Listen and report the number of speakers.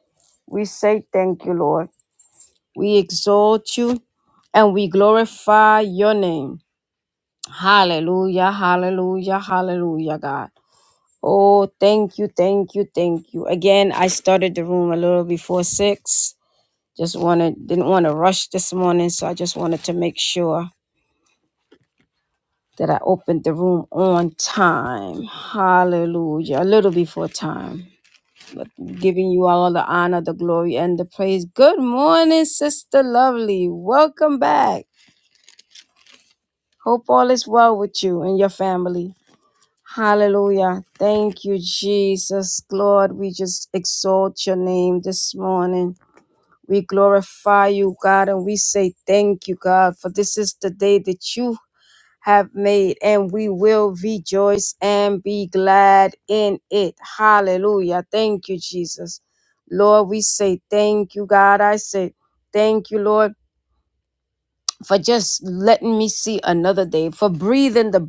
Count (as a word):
one